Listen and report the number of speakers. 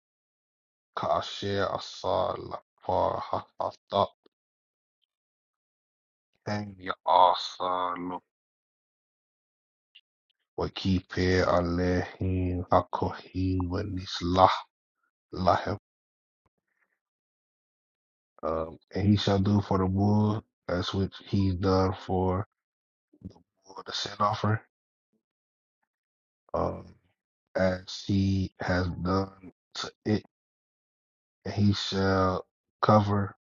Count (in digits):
1